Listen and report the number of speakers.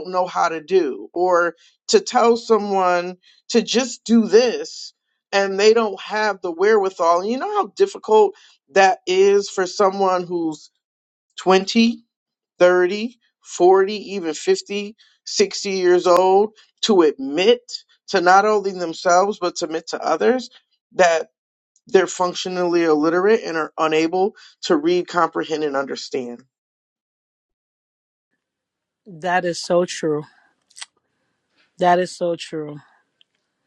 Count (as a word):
two